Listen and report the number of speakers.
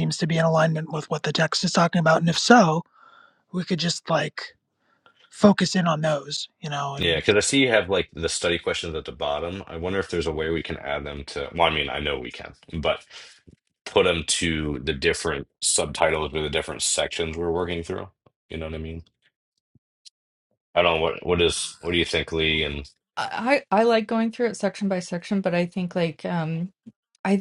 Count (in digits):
3